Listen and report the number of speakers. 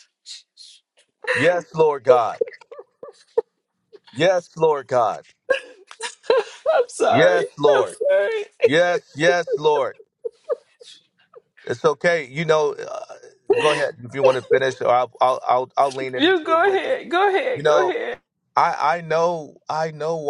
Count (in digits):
2